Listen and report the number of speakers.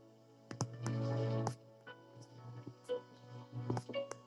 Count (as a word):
zero